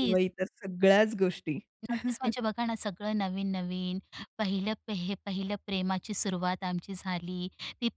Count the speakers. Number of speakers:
two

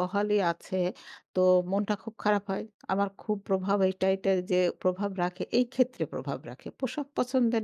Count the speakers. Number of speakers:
one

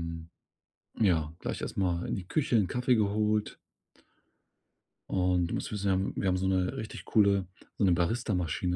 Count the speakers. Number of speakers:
one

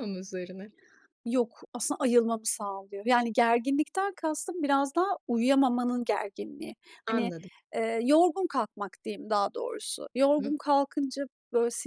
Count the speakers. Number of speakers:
two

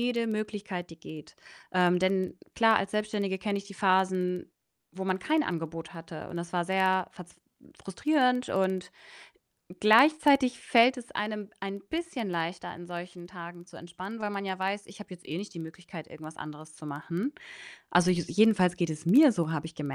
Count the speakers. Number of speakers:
one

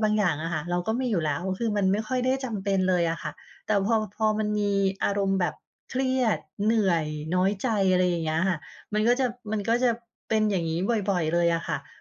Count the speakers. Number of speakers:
one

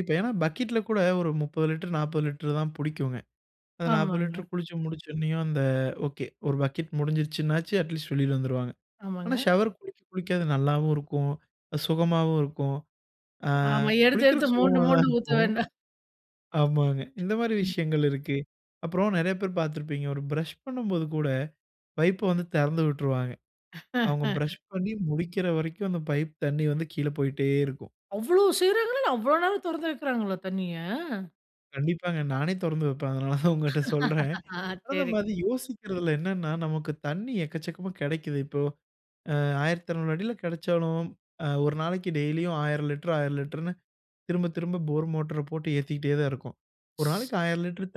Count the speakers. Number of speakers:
two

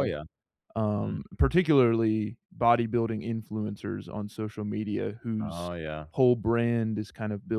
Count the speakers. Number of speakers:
two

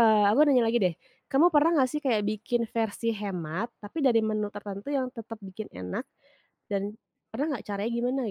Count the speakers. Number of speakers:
one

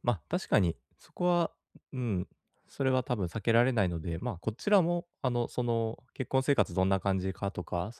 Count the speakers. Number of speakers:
one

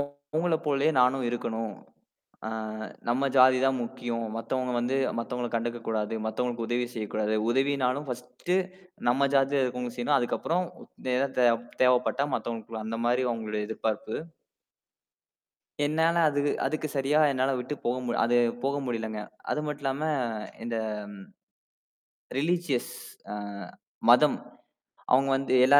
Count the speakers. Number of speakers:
one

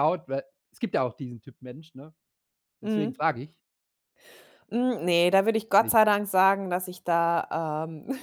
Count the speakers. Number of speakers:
two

